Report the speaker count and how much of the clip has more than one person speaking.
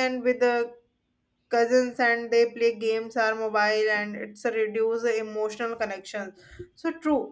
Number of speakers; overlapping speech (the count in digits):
1, no overlap